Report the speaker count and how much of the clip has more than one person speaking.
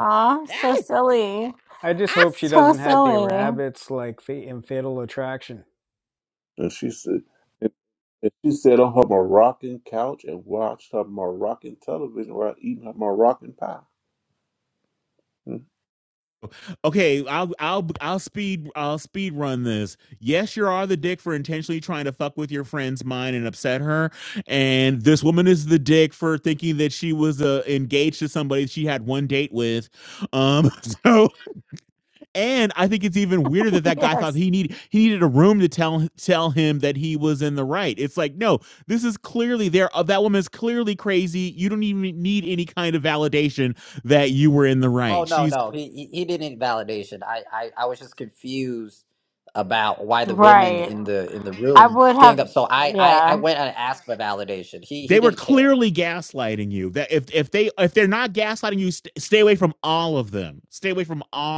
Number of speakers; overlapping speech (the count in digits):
5, about 7%